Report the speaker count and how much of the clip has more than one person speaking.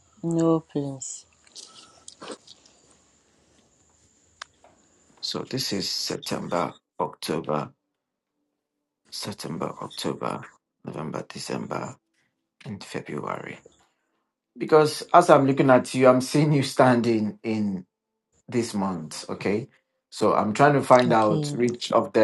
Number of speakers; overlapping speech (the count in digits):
2, about 3%